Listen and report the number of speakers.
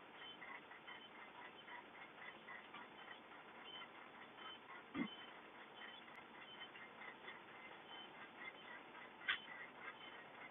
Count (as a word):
zero